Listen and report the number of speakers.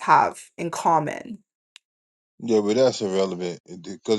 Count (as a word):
two